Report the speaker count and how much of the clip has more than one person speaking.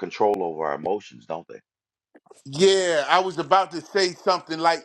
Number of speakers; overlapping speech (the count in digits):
2, no overlap